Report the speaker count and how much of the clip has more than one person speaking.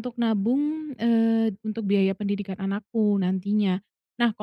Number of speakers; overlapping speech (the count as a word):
one, no overlap